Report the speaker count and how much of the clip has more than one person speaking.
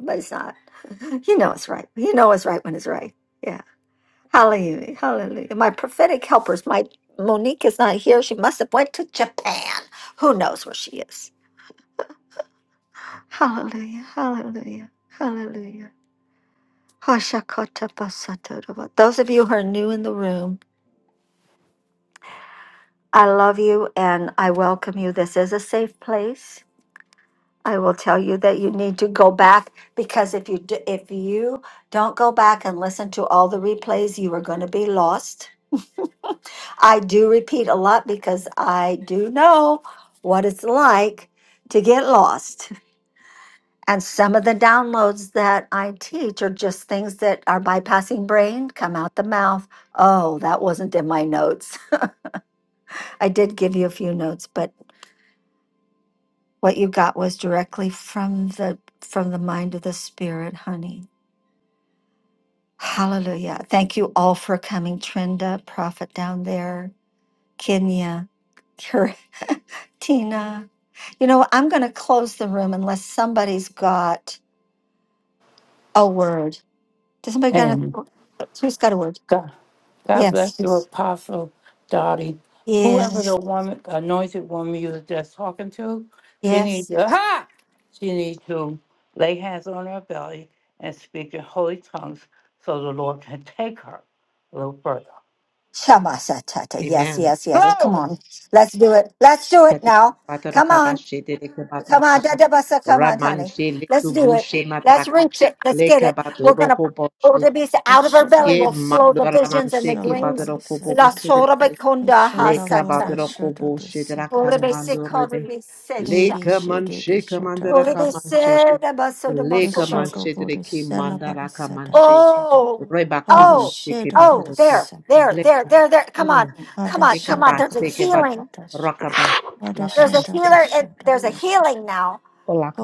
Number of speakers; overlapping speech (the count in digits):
4, about 16%